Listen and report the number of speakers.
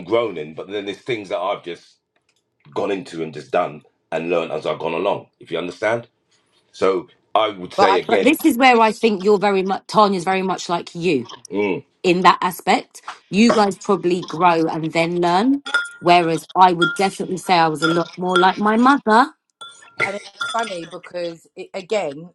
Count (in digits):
3